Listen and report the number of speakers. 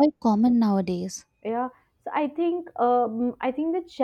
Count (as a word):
two